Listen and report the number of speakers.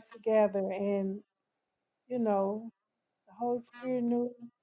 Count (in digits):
1